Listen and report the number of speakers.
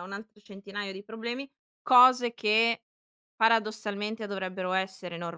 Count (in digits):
1